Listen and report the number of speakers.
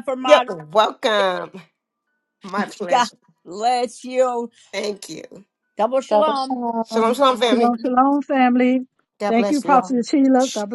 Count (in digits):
3